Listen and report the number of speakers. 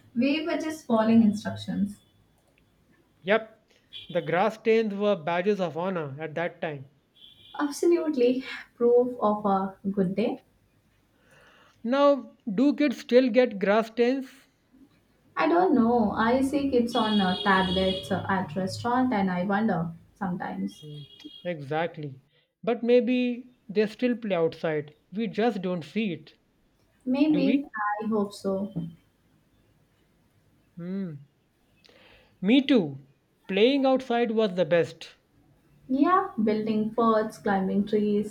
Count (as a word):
two